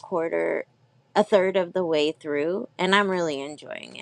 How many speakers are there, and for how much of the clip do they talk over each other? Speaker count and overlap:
one, no overlap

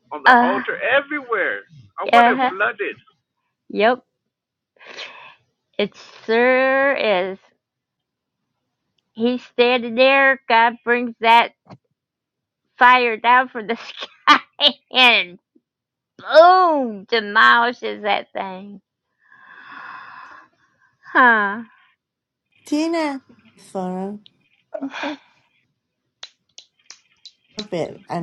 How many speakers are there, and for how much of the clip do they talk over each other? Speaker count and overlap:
three, about 3%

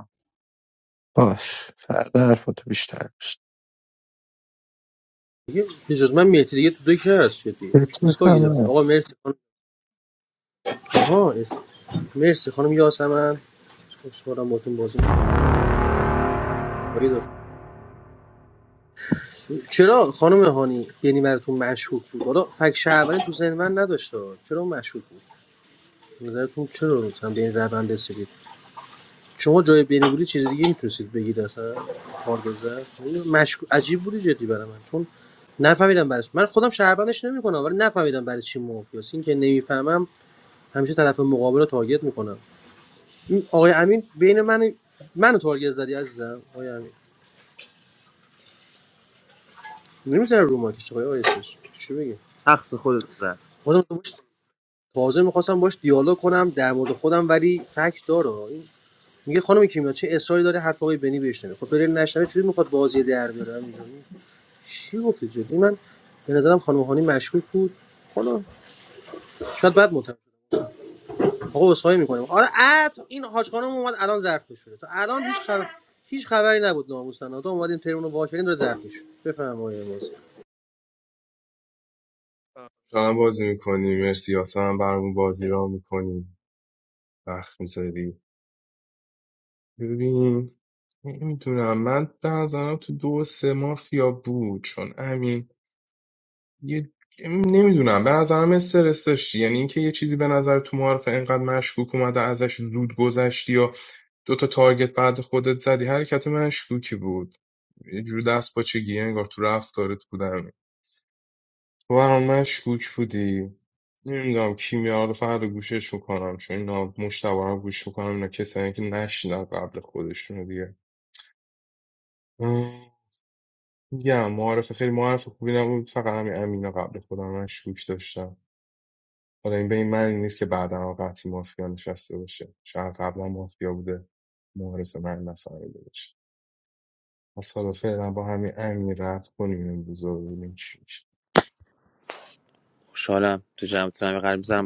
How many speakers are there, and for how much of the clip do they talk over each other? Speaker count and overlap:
four, about 1%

